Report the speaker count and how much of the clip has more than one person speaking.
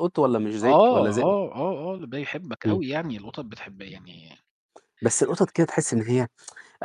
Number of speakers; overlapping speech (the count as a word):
two, about 12%